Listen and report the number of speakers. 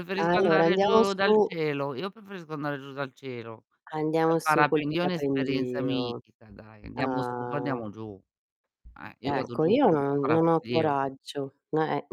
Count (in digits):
2